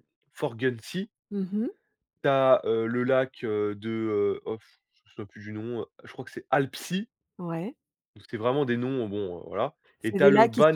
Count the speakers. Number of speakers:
two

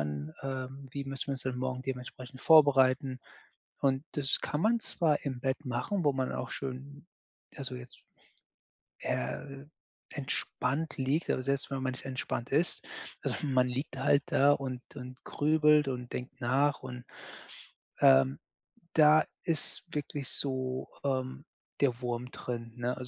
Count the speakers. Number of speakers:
one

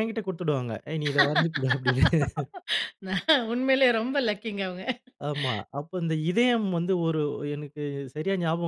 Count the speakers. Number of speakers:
two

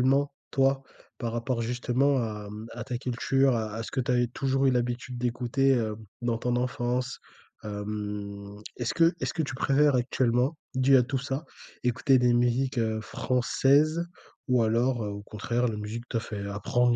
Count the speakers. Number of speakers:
one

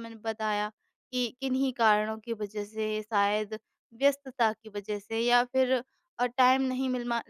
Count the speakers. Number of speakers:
one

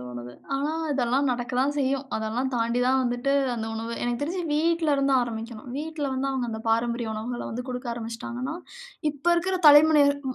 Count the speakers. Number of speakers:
one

